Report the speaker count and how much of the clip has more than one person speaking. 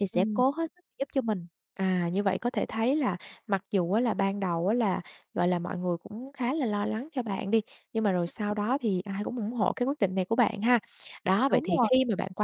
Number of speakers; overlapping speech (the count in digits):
2, about 6%